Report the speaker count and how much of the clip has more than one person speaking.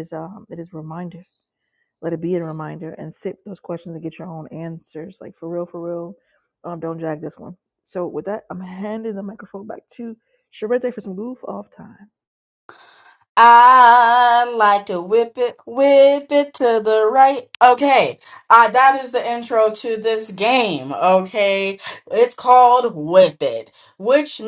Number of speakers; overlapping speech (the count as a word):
two, no overlap